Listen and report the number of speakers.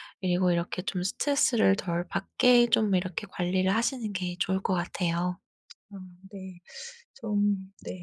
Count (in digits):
2